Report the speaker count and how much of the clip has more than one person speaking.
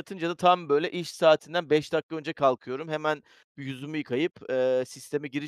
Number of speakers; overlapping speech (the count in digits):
1, no overlap